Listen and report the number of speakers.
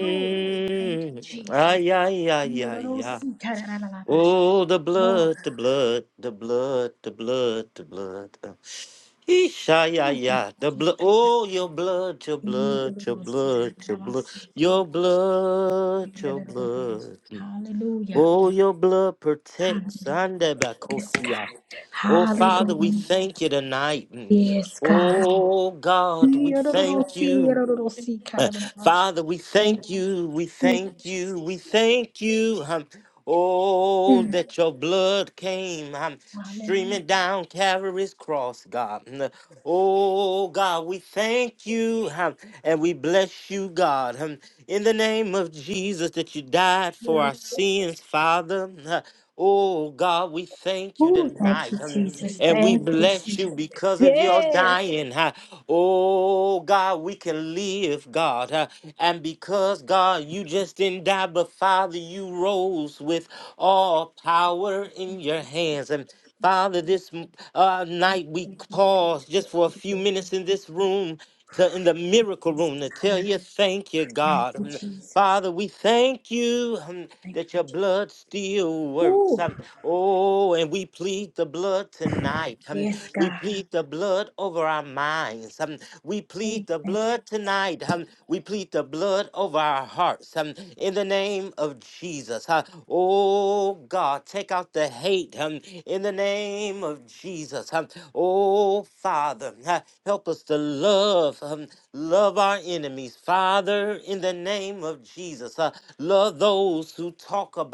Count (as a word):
two